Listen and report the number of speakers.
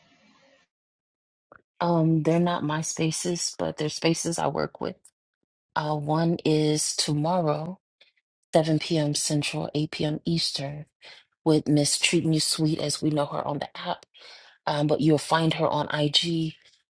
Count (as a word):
one